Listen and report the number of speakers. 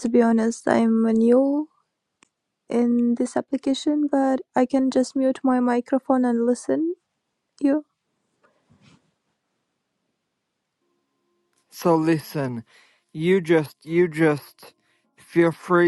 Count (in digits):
2